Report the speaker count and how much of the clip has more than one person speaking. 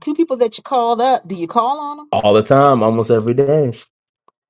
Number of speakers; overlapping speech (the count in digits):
2, no overlap